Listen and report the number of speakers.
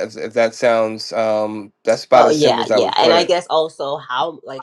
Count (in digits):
2